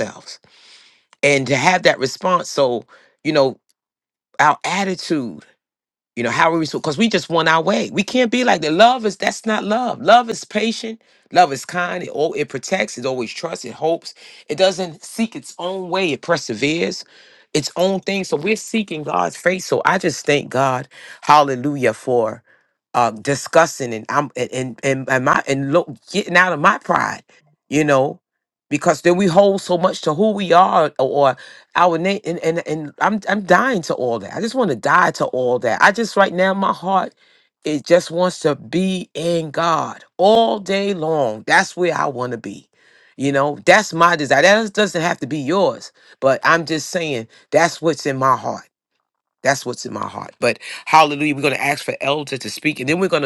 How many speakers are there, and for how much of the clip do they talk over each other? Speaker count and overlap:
1, no overlap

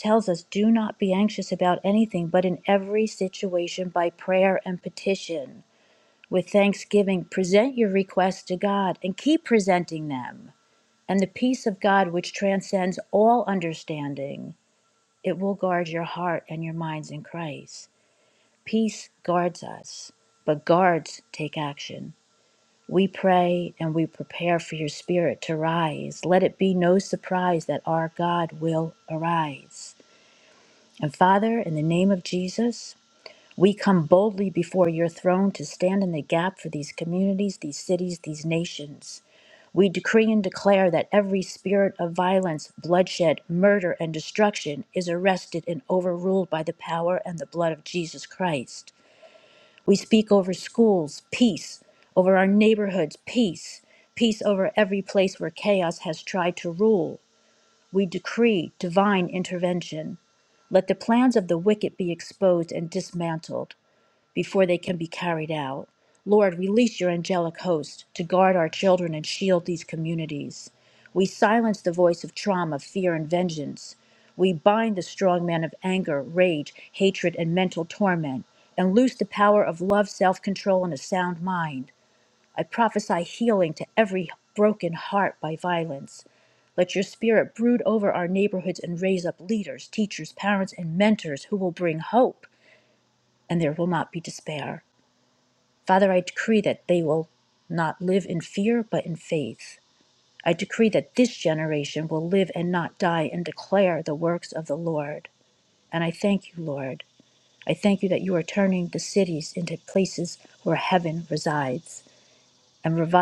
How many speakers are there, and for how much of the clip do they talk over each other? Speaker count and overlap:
1, no overlap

